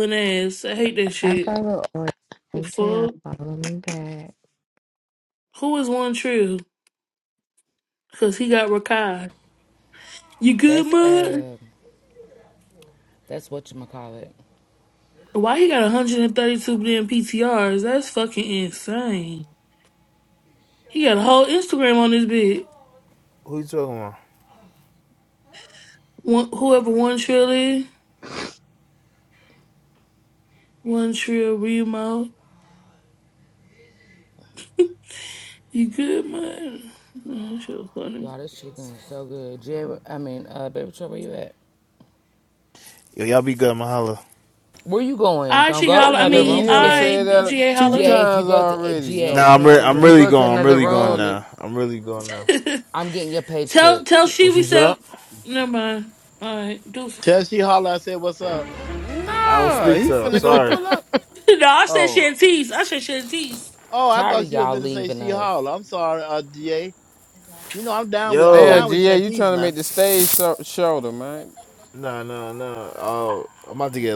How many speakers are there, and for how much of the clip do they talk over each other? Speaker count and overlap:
six, about 17%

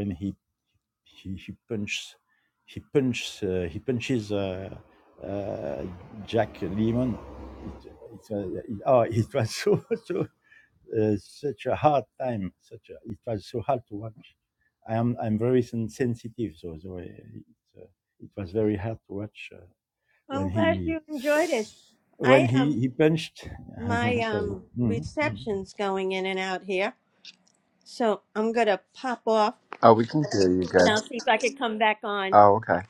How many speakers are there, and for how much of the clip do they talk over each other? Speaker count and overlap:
three, about 8%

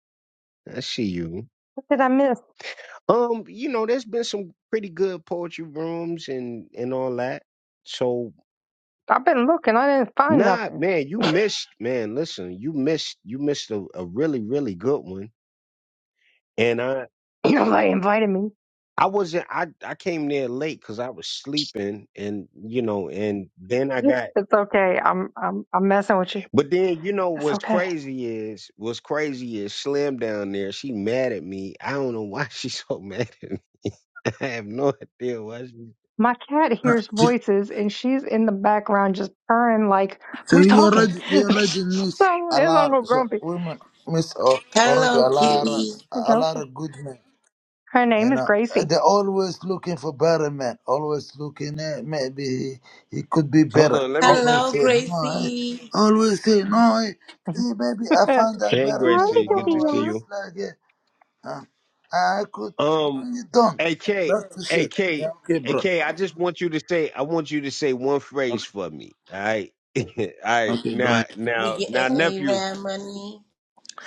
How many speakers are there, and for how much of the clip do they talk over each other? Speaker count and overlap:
four, about 16%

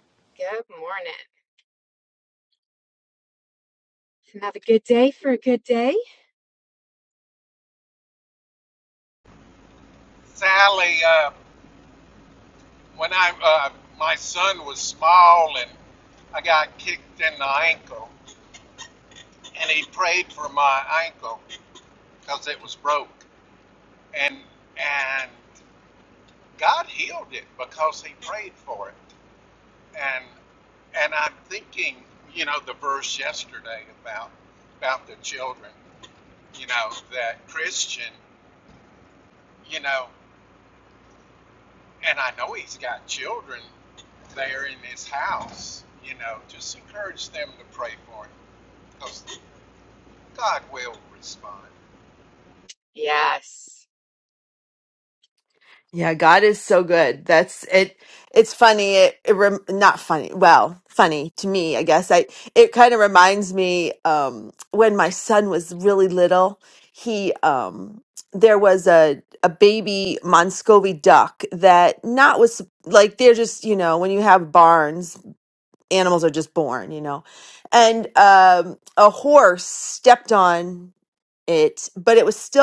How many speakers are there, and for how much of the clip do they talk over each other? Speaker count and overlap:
three, no overlap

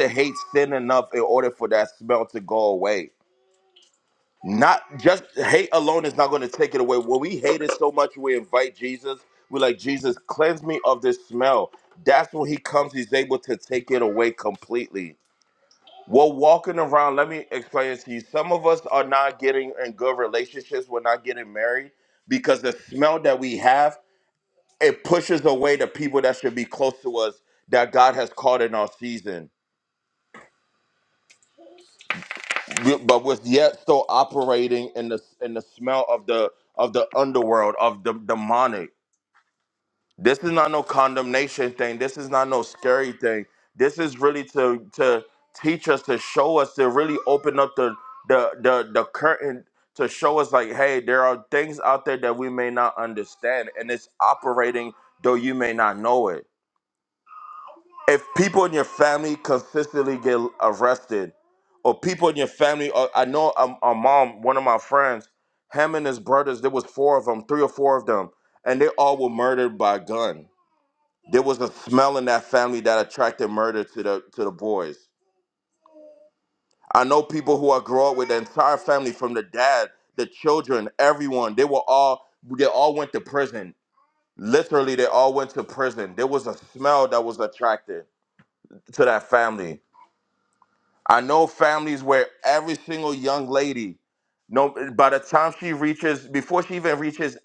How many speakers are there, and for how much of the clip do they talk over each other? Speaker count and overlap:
one, no overlap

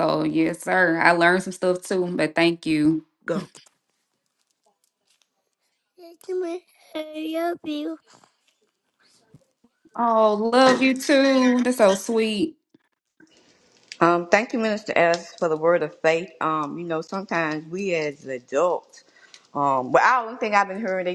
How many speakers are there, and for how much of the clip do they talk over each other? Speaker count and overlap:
three, no overlap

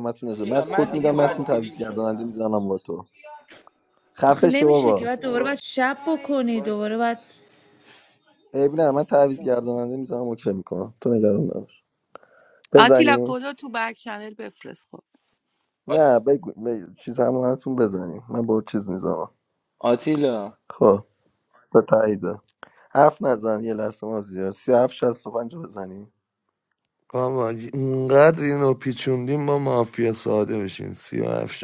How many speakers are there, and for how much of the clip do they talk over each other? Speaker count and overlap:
five, about 12%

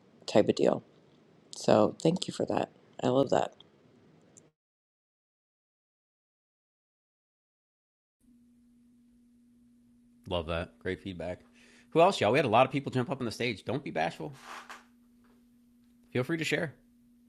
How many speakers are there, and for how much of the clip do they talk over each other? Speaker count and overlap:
two, no overlap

